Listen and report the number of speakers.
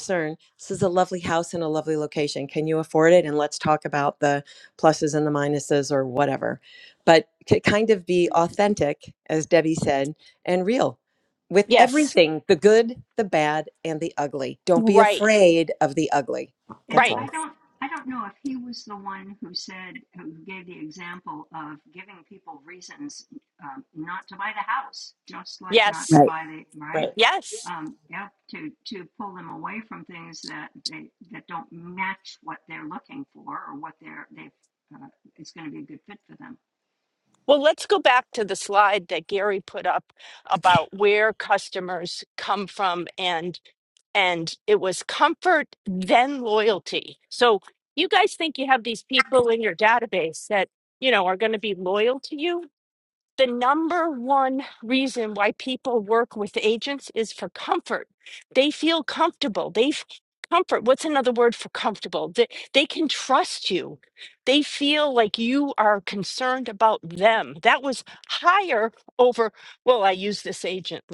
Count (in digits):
3